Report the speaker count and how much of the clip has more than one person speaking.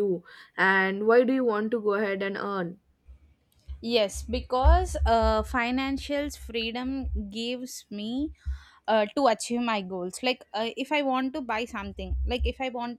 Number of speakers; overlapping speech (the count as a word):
two, no overlap